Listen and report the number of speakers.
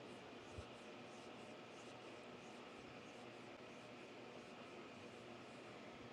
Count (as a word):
zero